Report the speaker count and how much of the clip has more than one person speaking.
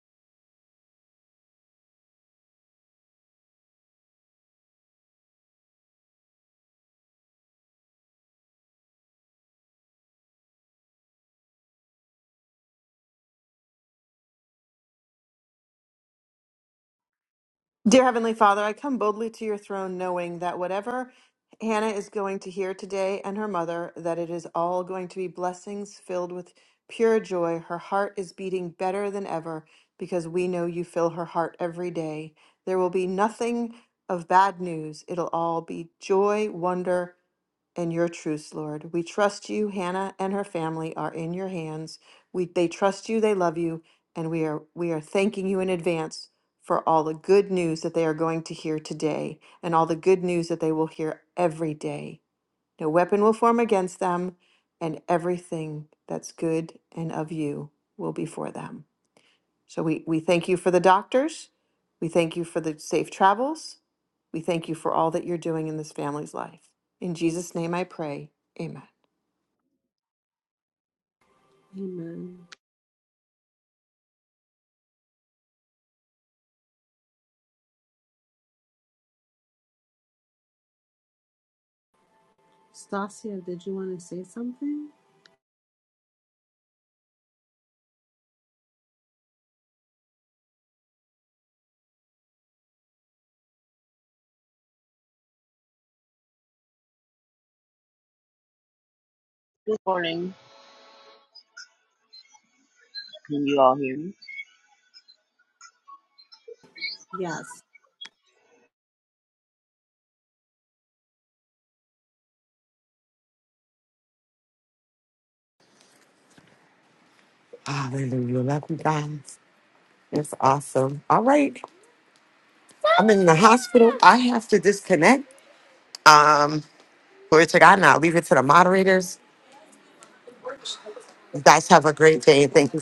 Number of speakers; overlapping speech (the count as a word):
four, no overlap